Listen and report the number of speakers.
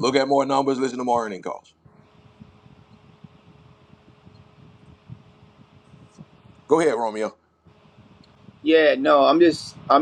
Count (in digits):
2